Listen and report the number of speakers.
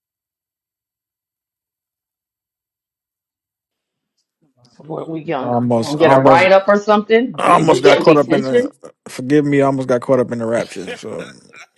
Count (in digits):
2